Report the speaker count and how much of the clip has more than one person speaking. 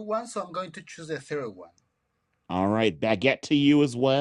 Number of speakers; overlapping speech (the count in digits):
2, no overlap